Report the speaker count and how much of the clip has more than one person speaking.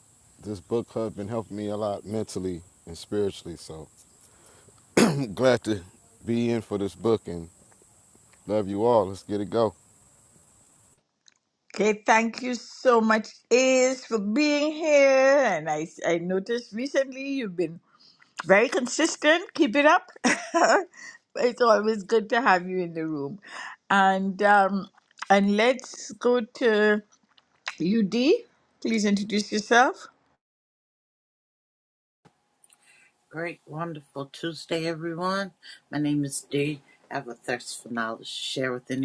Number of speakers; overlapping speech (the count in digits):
3, no overlap